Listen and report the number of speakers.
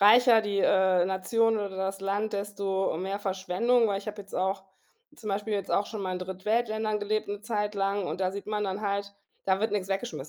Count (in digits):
1